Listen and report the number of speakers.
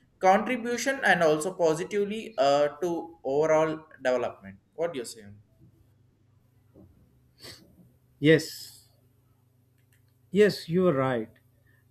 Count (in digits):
2